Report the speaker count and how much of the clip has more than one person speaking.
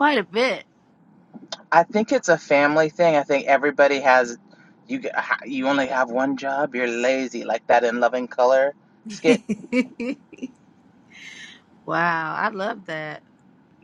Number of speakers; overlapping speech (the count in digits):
2, no overlap